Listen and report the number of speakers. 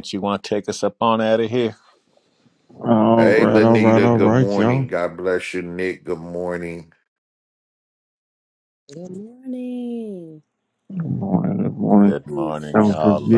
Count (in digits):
4